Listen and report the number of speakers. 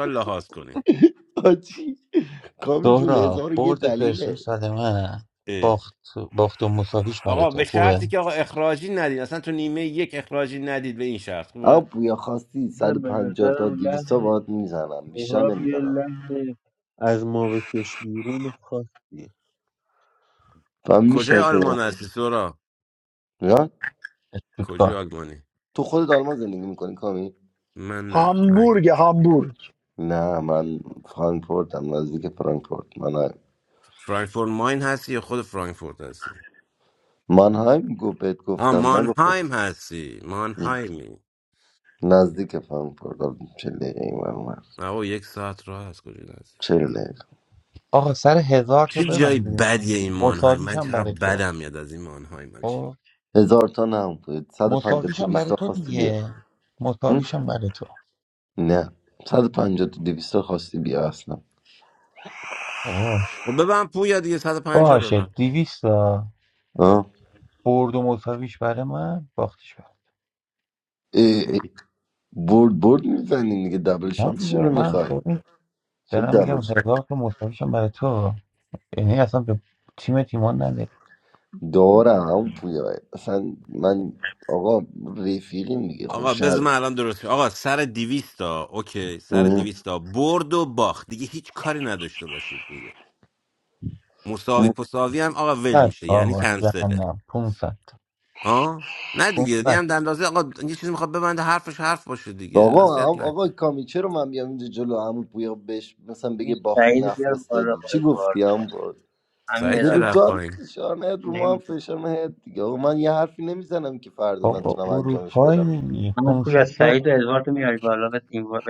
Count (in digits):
6